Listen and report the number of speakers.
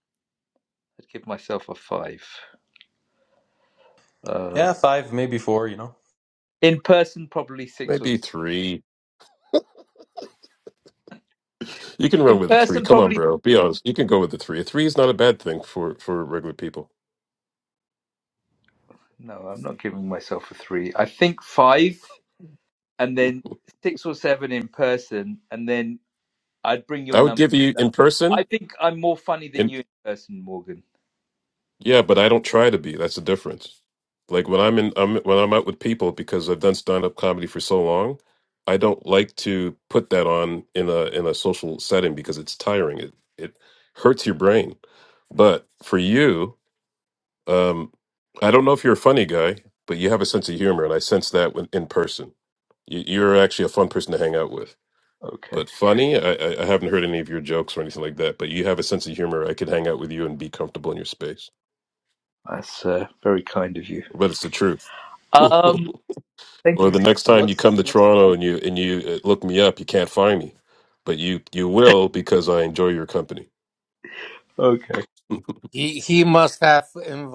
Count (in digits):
4